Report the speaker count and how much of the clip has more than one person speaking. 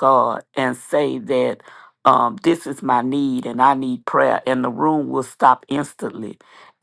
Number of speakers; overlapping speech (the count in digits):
1, no overlap